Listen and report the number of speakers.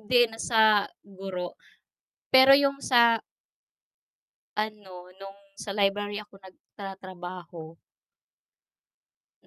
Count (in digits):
1